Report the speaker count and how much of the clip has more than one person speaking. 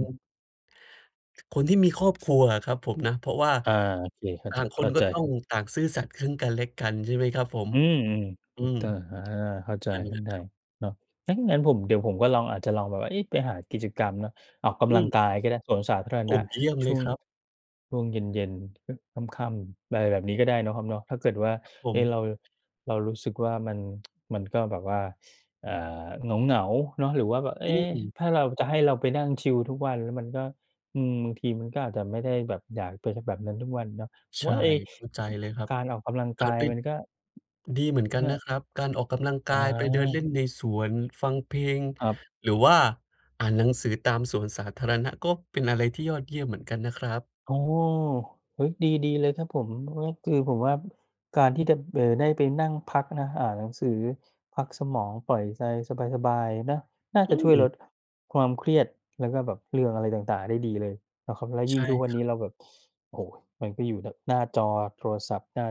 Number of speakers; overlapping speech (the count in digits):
2, about 7%